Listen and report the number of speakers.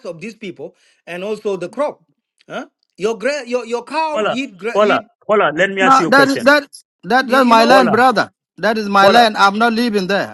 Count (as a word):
three